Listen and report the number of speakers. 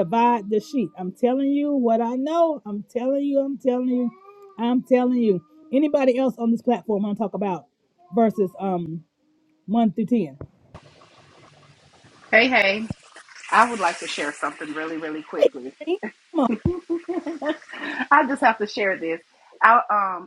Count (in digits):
2